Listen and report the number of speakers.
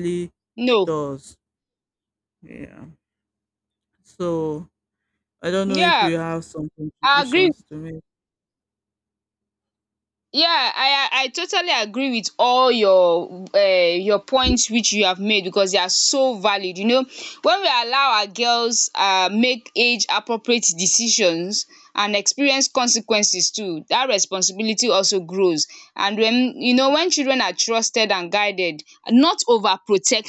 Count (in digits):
2